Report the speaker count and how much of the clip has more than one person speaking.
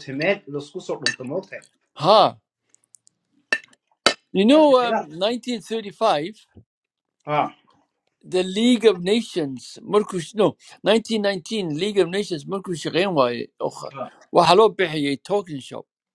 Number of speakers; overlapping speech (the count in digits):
2, no overlap